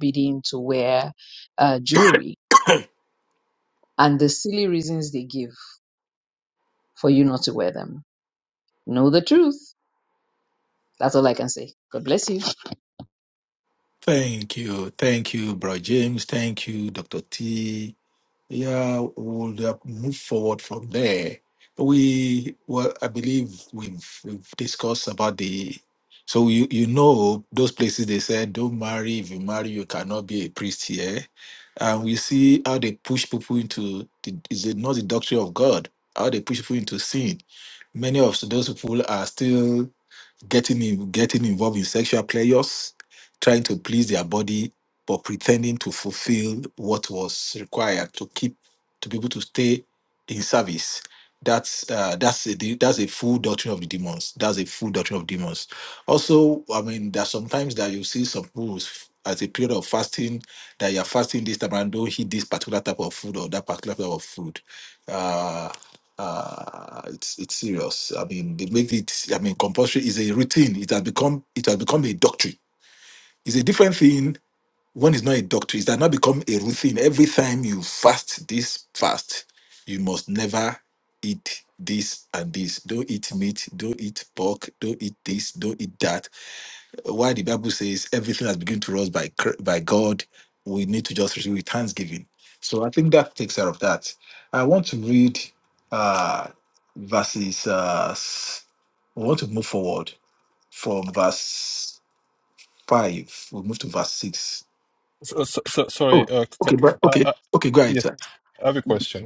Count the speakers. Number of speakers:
3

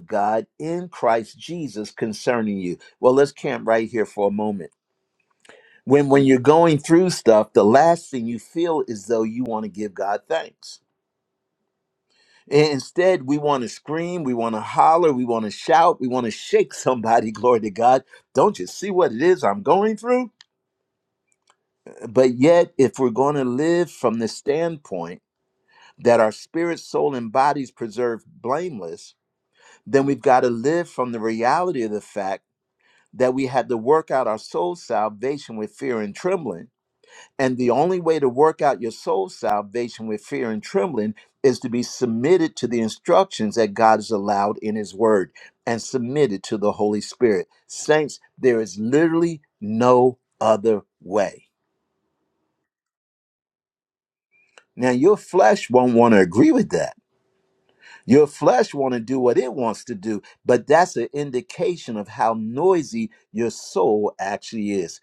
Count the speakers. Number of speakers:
1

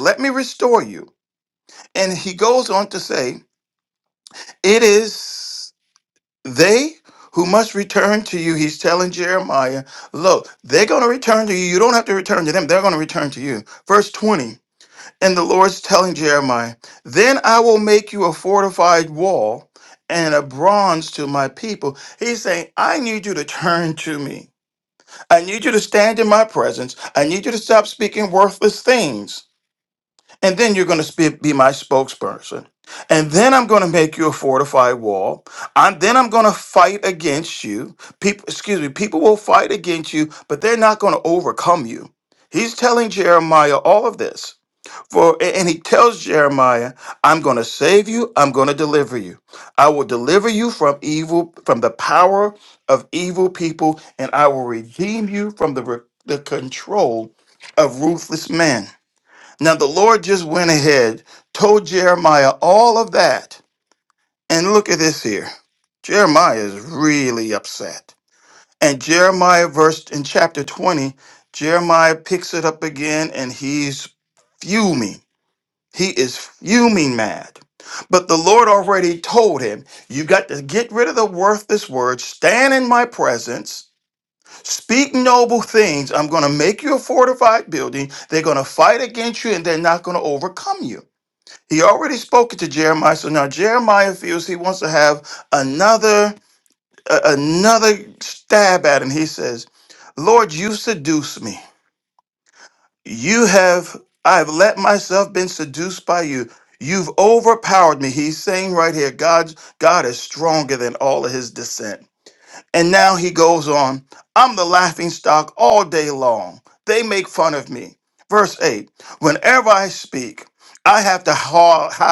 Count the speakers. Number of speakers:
1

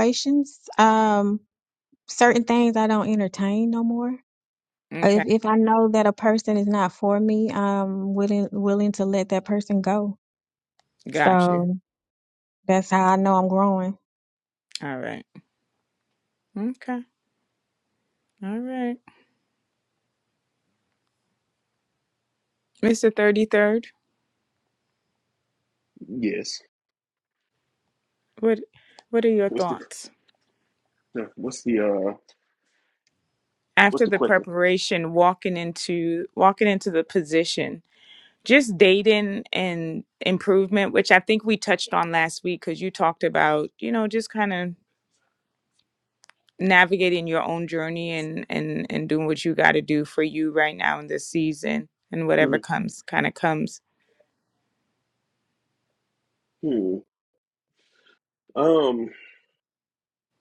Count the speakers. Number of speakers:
3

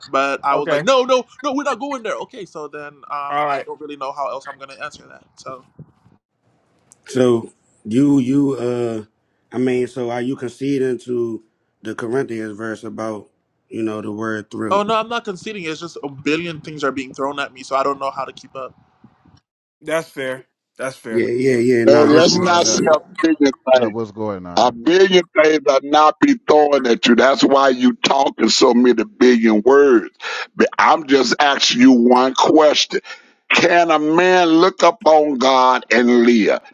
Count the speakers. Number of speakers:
5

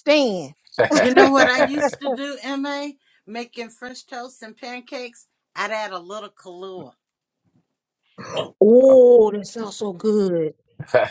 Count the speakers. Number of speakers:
2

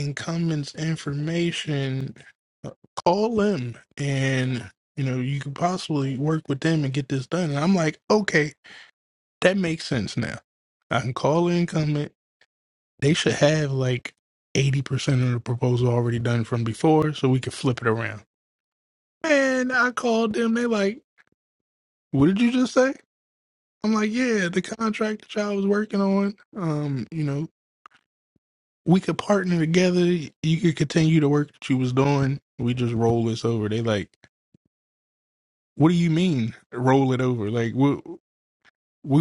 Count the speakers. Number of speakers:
1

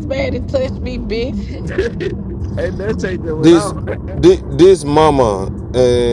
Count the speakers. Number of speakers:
3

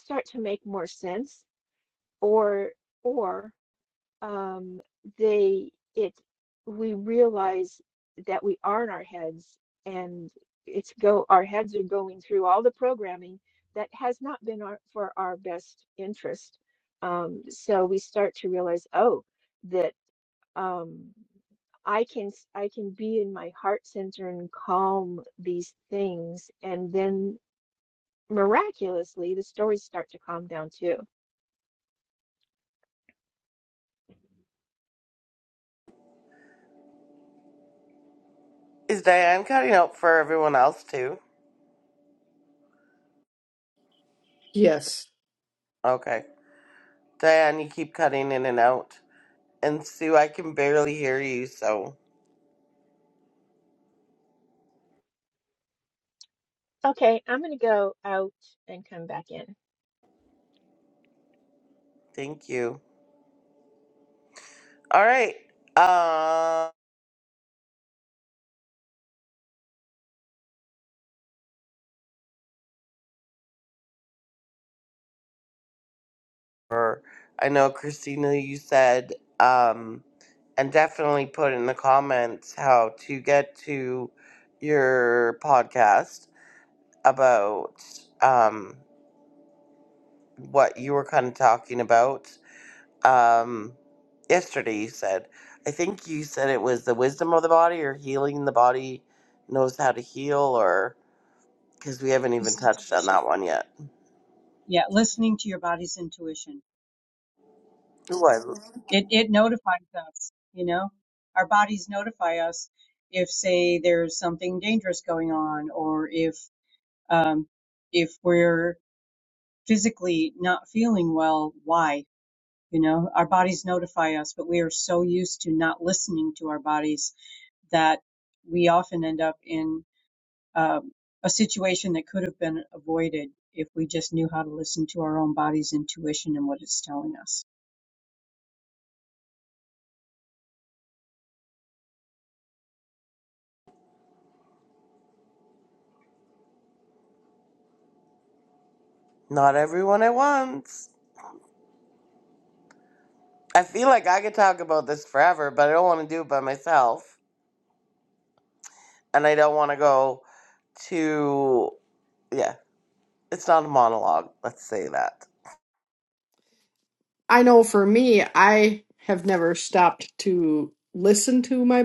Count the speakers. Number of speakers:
4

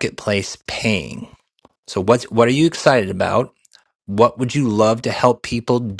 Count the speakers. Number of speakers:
1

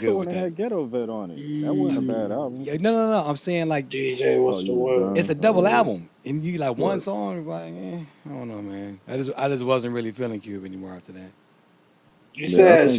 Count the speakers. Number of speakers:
3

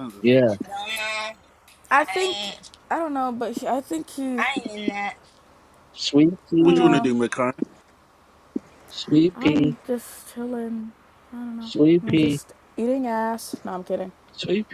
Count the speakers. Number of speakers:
4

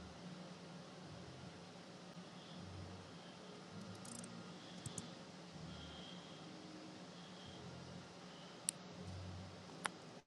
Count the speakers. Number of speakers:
0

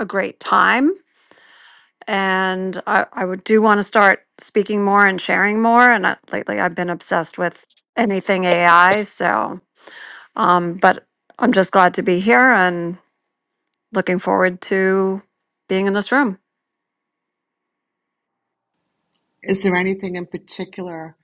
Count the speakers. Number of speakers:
2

